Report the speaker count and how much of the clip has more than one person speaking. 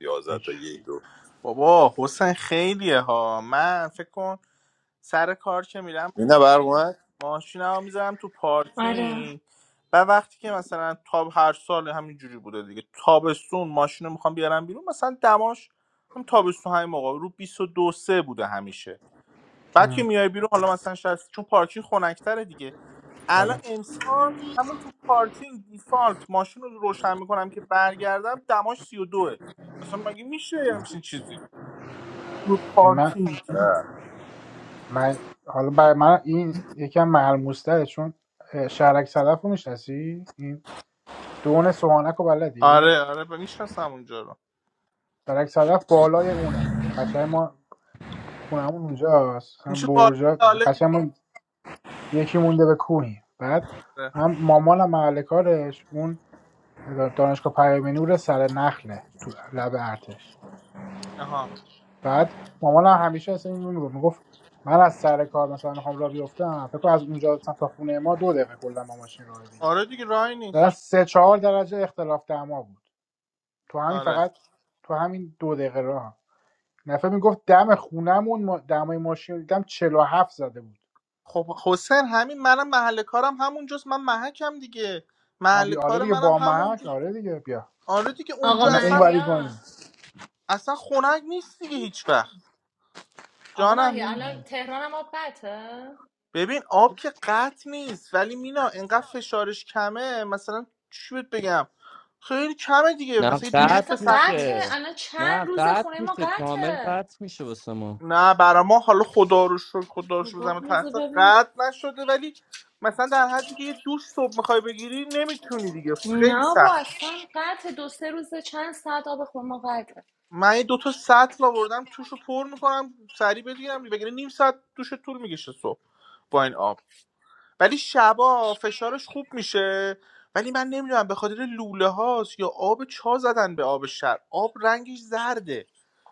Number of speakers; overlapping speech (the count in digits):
5, about 9%